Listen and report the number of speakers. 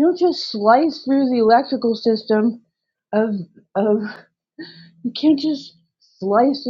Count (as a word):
one